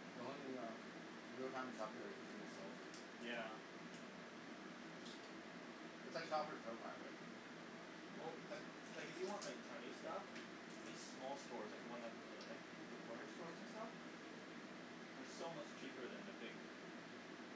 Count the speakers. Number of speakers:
two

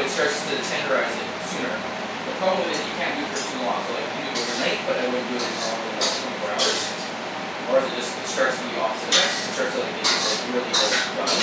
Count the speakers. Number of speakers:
one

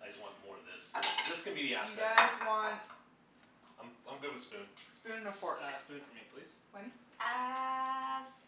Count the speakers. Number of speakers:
four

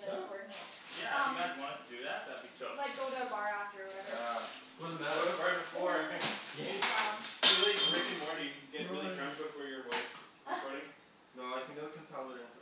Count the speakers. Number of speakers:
four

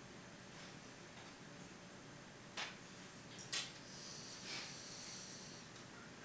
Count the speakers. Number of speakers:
zero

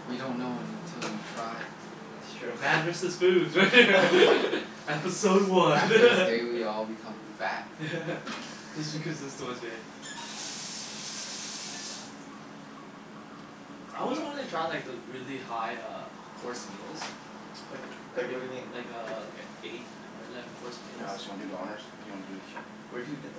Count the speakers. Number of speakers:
four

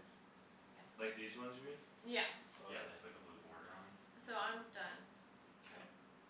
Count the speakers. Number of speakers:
three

